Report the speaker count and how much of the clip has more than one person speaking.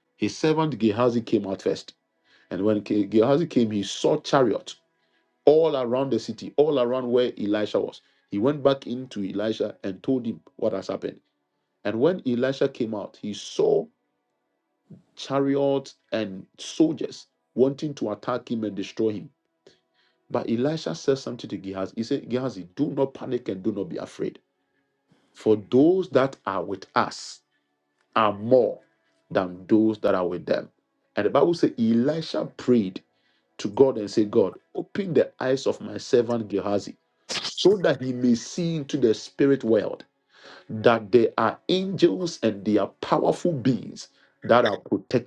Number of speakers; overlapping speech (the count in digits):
1, no overlap